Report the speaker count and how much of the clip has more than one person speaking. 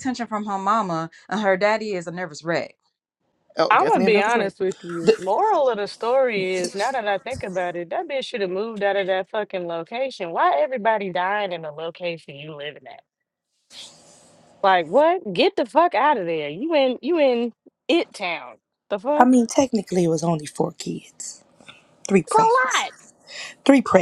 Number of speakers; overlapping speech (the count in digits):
3, about 5%